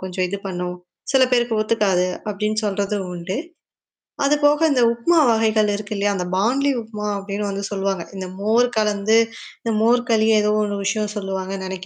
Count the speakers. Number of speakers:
one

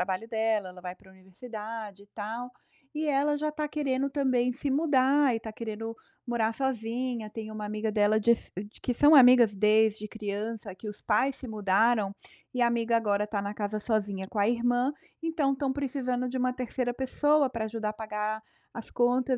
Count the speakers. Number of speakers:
one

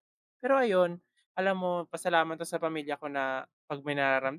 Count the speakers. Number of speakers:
one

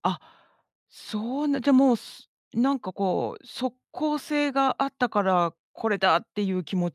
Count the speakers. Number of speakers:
one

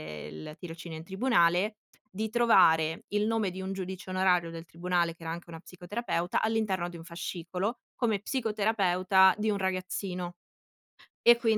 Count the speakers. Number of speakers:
one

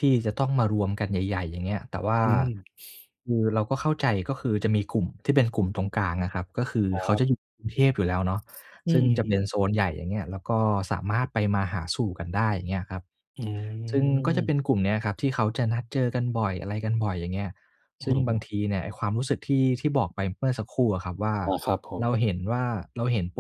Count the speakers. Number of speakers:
two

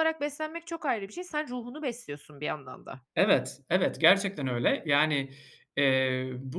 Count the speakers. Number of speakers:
two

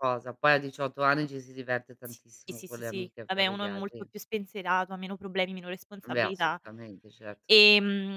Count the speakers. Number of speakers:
two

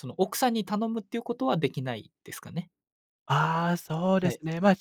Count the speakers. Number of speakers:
two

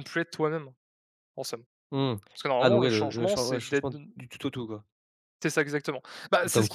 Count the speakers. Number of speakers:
two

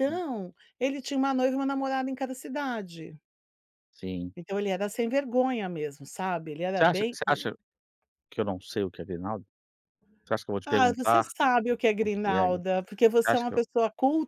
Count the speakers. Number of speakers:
two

